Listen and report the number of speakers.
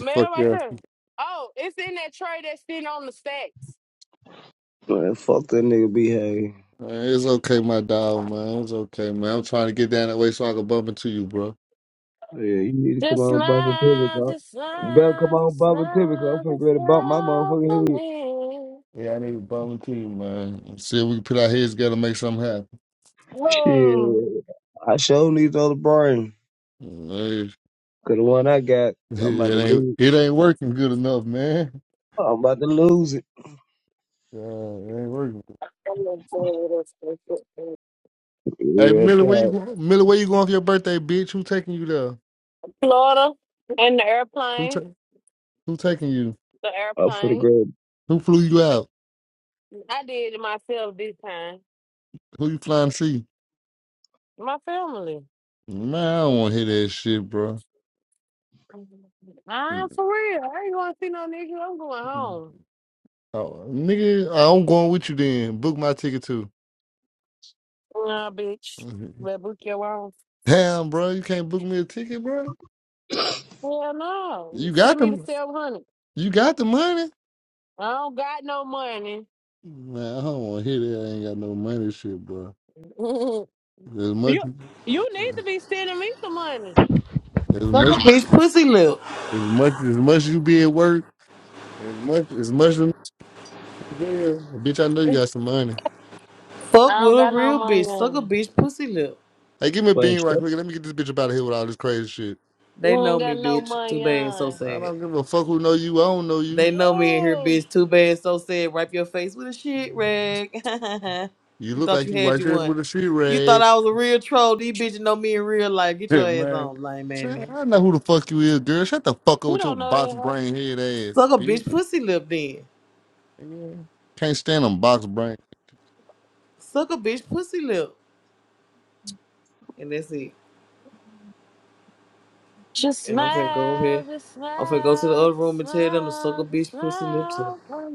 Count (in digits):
4